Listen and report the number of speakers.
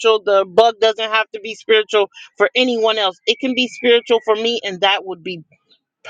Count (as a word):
one